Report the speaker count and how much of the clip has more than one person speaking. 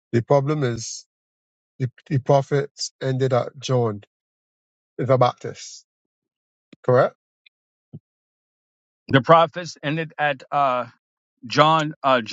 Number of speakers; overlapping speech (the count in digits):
2, no overlap